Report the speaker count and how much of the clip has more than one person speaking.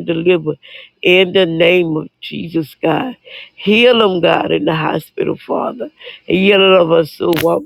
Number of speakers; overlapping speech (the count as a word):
one, no overlap